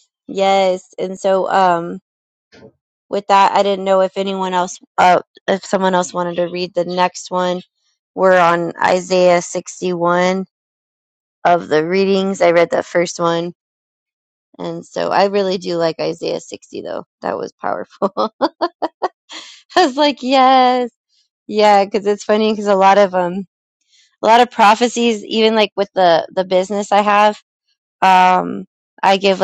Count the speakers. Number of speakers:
one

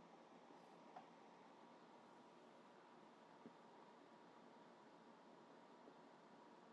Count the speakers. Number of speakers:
zero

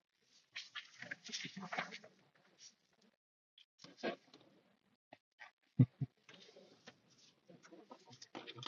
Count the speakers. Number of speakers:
zero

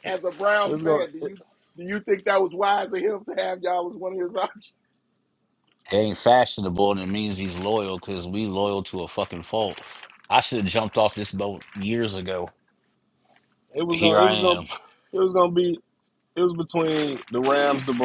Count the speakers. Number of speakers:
three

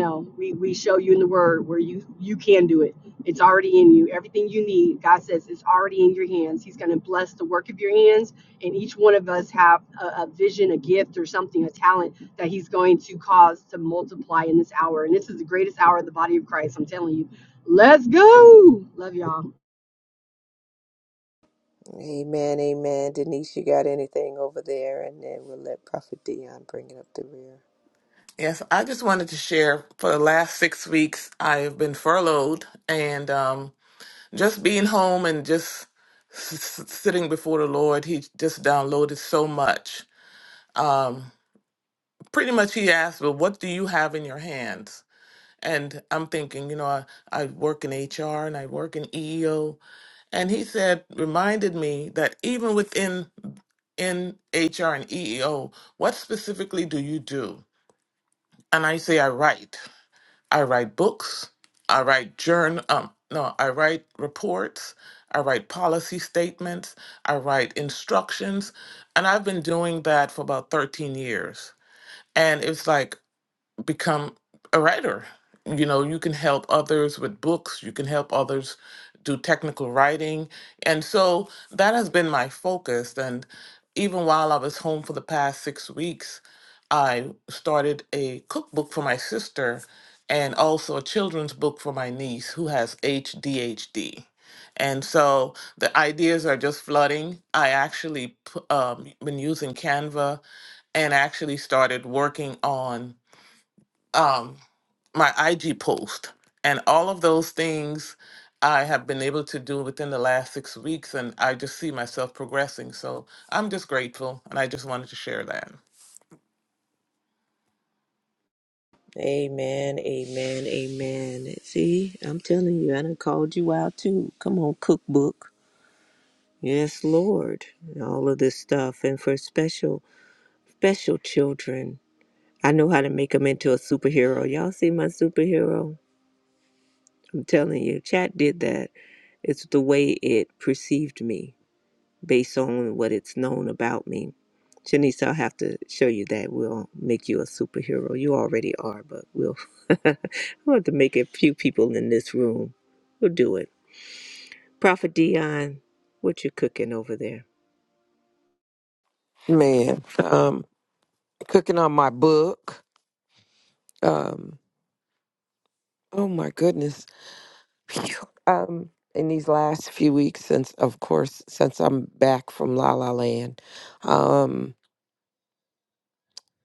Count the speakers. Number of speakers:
four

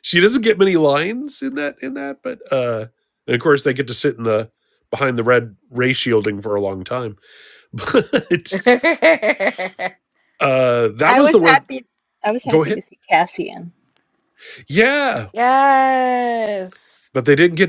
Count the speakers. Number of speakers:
three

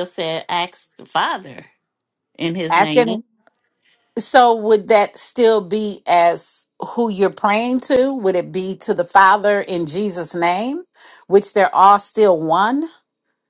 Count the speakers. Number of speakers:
two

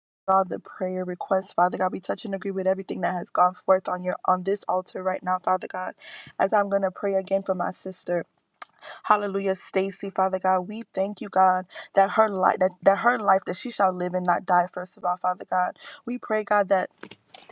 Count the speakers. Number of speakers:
one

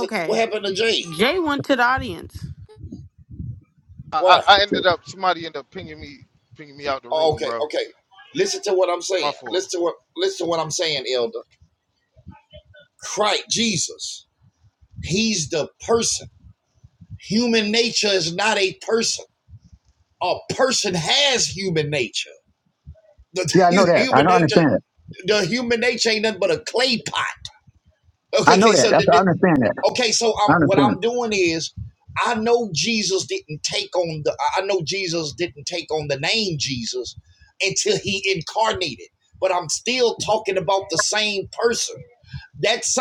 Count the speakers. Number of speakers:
four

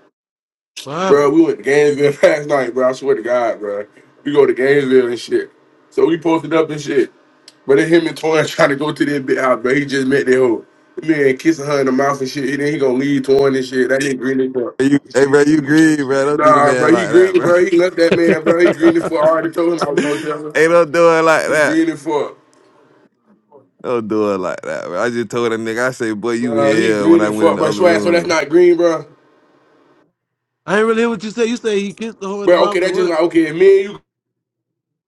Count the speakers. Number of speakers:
three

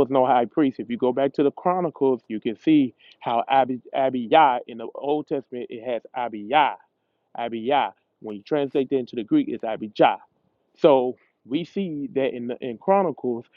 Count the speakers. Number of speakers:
one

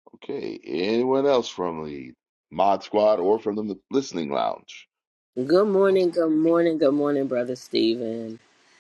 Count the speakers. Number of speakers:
two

